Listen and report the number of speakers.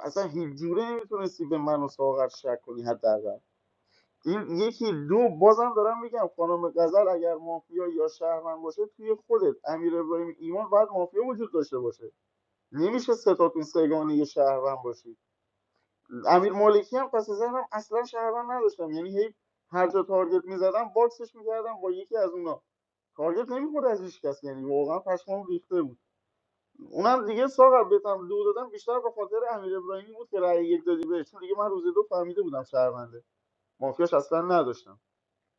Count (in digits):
1